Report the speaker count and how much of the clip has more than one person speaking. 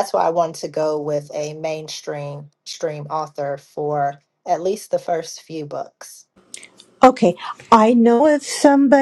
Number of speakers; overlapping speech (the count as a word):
two, no overlap